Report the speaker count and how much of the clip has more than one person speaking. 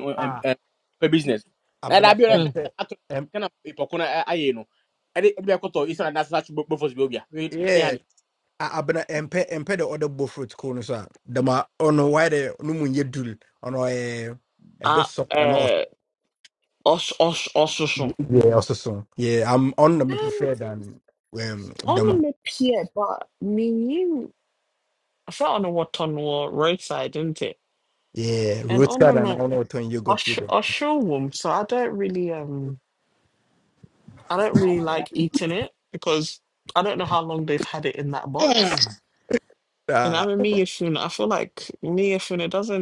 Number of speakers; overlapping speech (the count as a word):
three, about 10%